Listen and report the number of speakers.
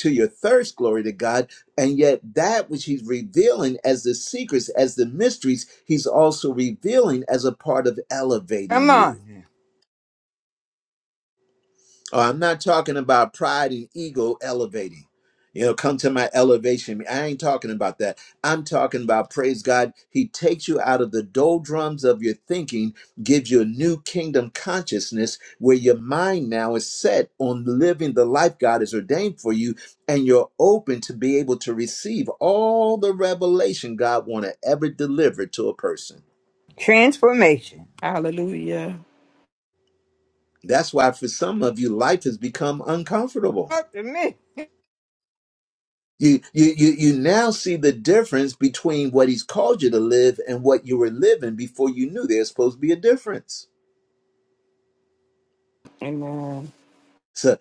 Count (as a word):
three